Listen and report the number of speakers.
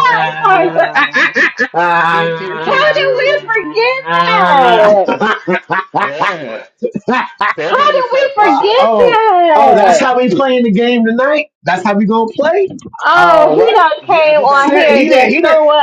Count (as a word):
three